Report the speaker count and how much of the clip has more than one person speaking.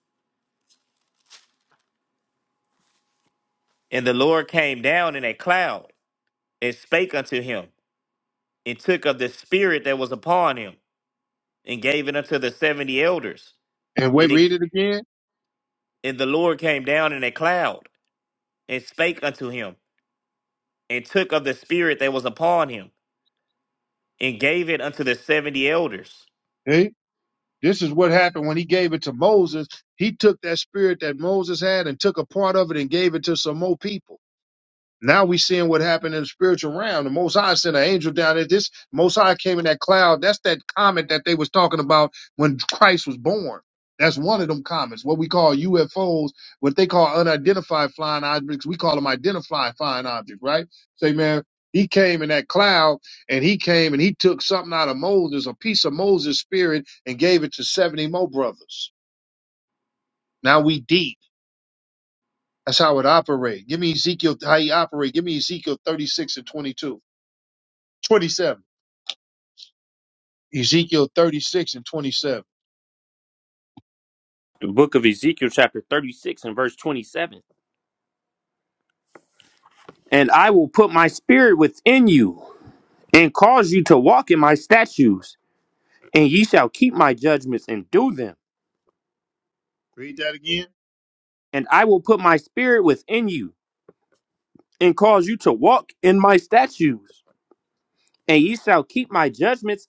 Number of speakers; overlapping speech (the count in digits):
3, under 1%